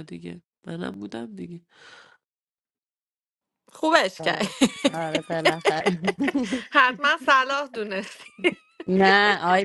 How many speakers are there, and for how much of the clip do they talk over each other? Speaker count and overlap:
three, about 3%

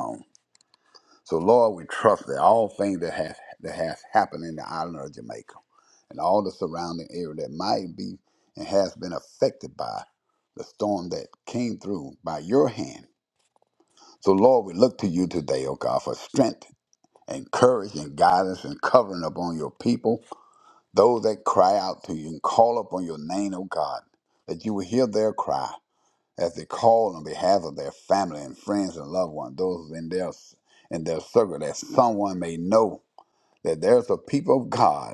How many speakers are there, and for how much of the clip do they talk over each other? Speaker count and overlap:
one, no overlap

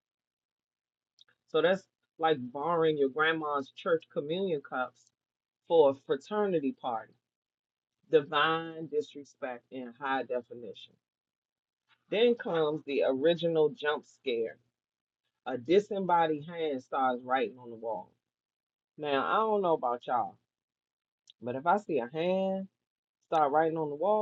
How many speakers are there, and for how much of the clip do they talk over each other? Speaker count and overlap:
one, no overlap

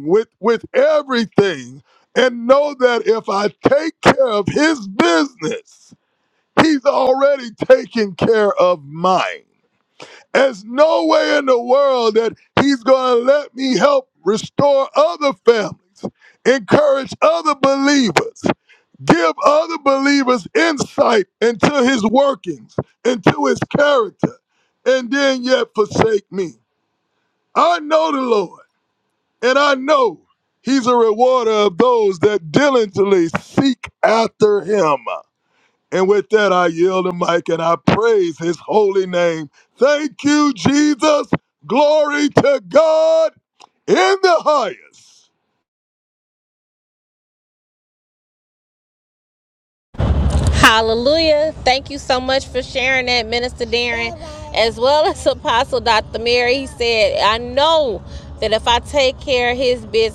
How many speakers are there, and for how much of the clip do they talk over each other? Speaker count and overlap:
two, no overlap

